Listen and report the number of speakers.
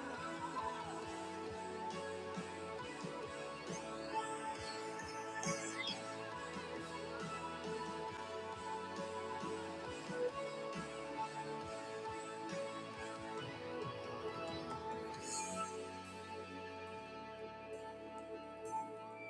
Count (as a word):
zero